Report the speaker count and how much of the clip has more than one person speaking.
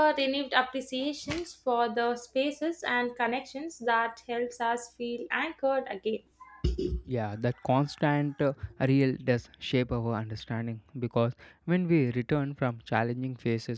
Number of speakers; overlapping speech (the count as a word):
two, no overlap